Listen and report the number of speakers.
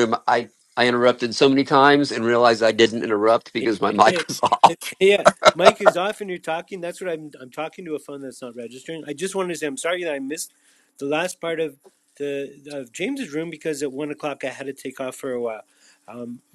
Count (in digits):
2